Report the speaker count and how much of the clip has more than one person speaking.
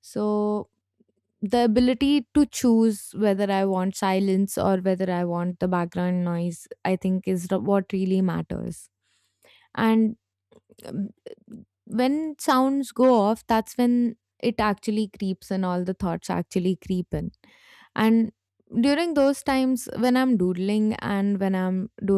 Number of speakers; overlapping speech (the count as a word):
one, no overlap